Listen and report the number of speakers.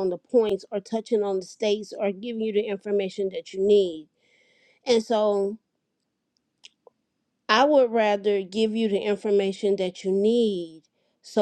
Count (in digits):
1